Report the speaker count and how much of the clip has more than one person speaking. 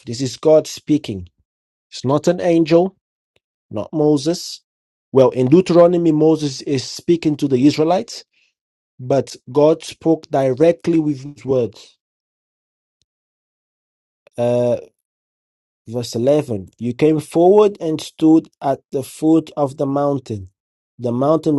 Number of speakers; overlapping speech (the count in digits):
1, no overlap